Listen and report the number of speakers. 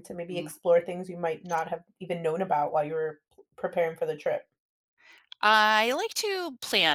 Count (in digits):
2